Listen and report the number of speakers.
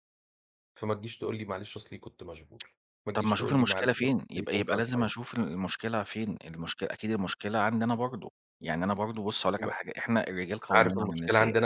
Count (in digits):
2